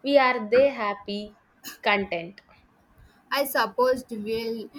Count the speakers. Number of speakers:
2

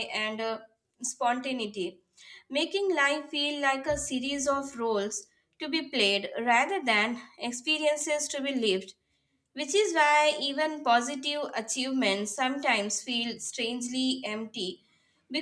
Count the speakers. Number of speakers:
1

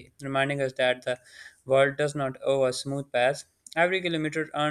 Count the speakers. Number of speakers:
1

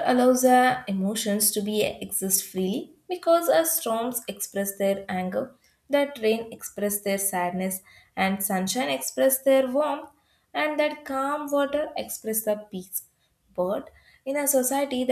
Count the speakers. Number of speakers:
1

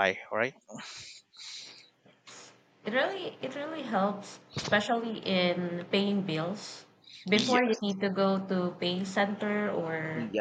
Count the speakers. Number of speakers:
2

